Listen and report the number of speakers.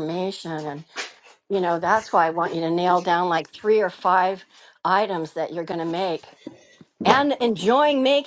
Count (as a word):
one